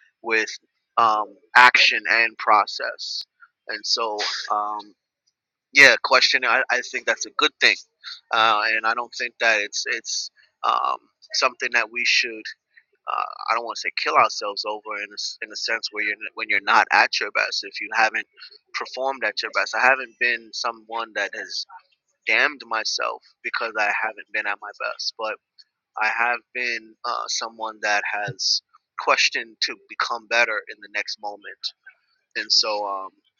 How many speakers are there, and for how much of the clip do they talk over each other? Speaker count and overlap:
1, no overlap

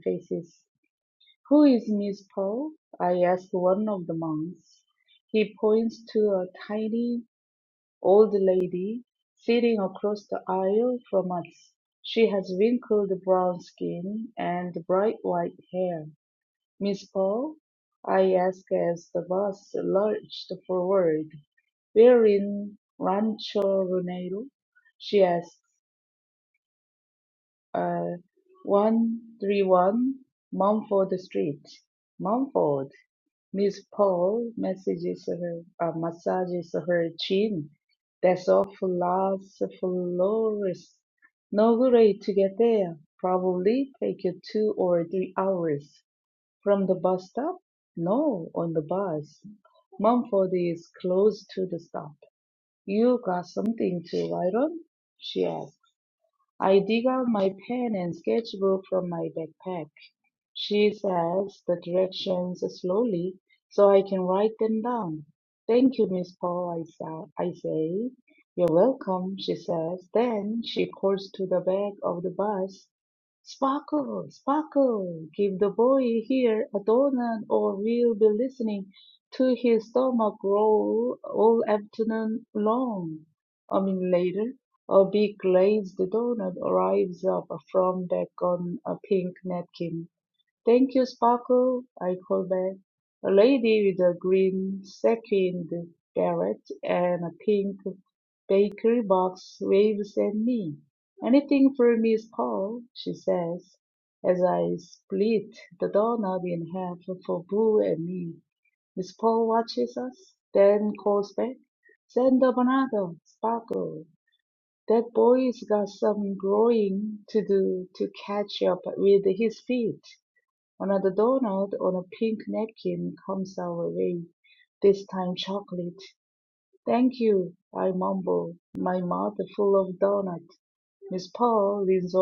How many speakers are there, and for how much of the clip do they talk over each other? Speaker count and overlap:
1, no overlap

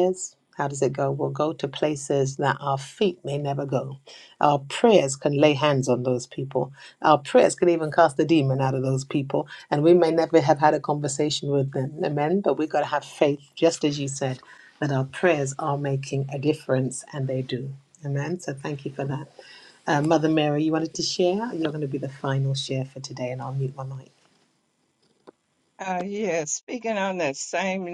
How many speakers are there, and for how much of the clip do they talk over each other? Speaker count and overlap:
2, no overlap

